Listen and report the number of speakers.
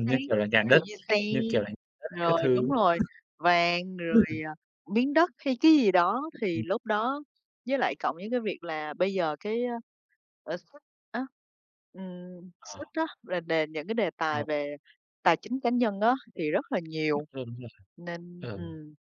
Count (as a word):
two